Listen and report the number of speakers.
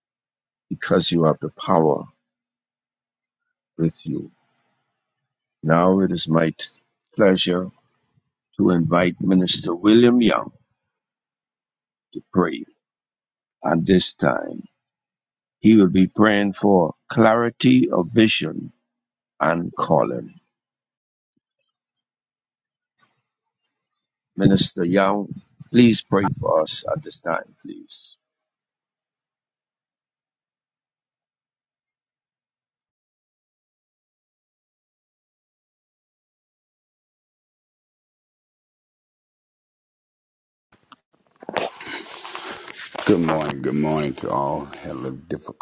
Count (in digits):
2